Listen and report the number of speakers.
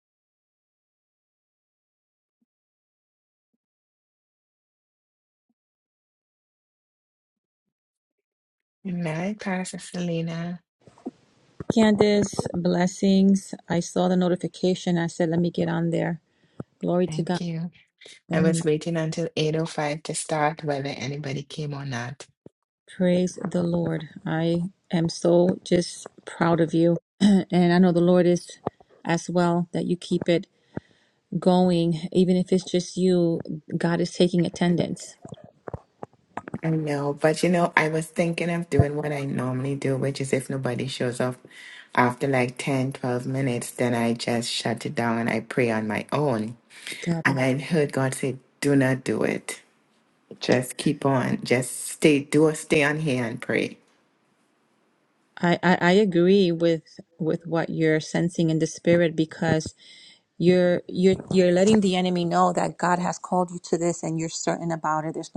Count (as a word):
two